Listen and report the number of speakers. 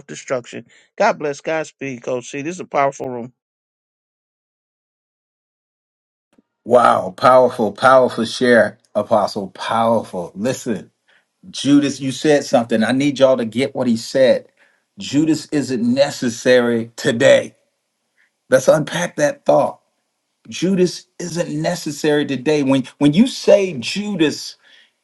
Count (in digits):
2